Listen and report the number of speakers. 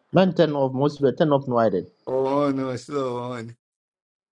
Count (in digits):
2